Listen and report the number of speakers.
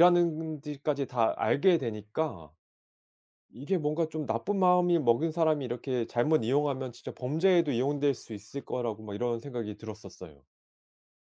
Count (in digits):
1